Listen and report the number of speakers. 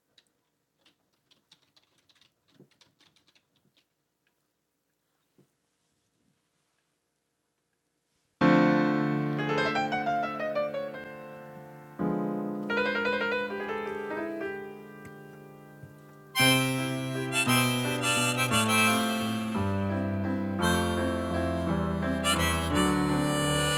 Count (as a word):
zero